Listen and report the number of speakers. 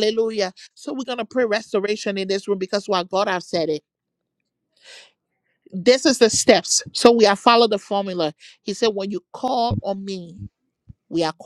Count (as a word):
one